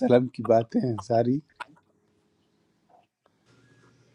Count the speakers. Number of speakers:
1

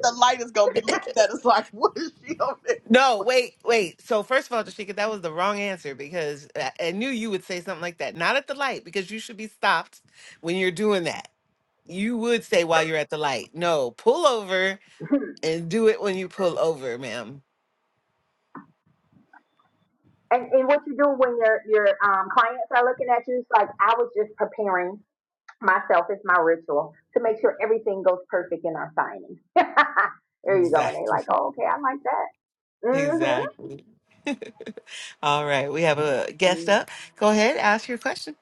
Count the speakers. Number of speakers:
3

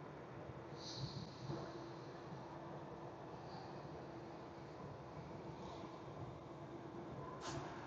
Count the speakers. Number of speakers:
0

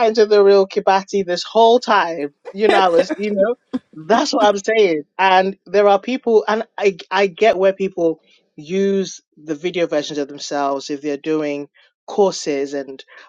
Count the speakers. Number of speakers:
1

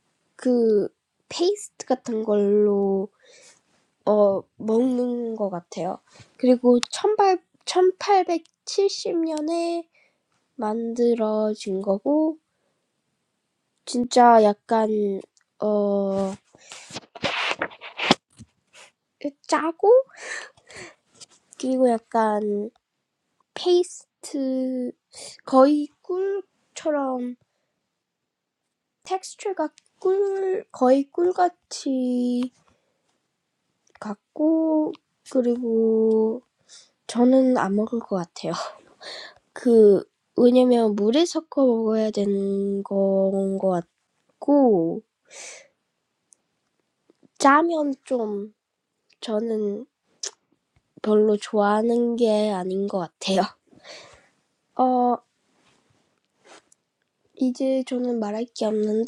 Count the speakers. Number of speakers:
1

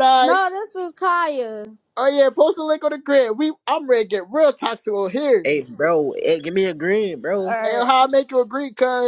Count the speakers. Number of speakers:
3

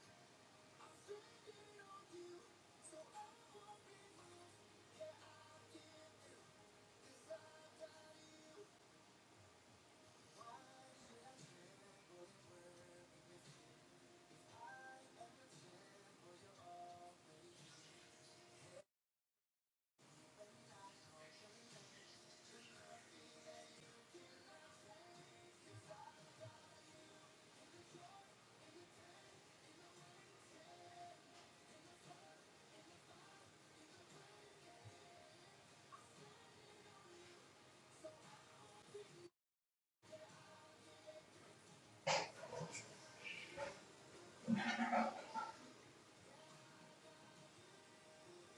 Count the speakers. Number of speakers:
0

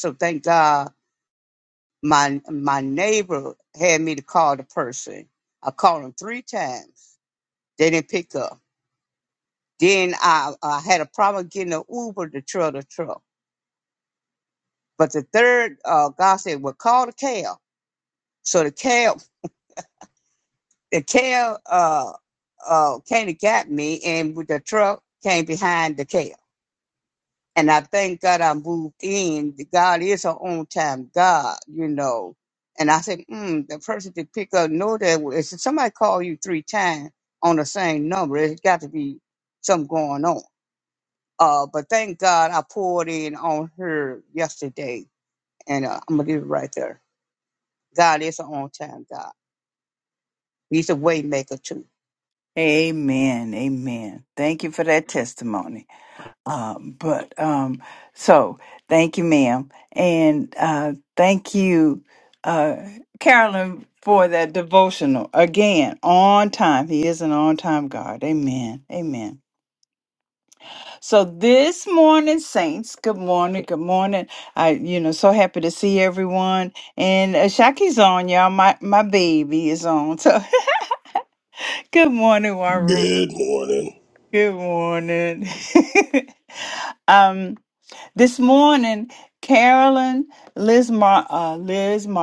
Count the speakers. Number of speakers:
3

